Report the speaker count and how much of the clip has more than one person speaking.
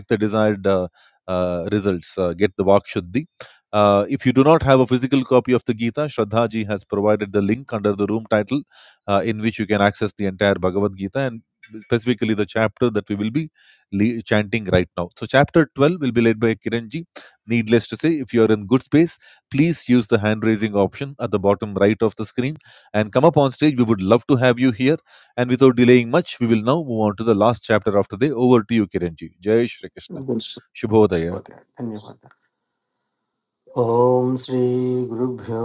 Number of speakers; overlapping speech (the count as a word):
two, about 1%